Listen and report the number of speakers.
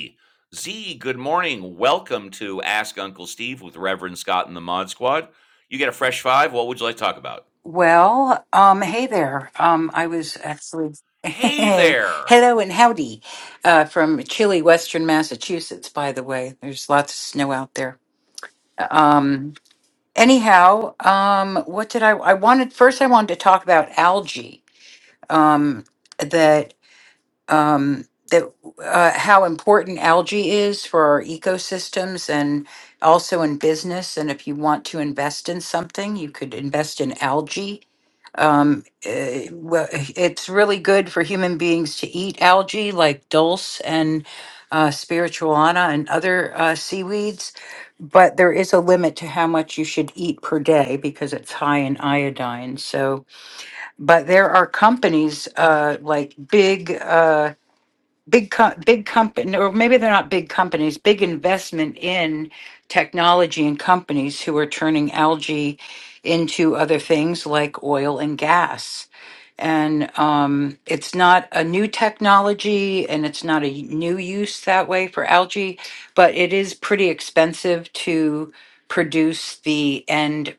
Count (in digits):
2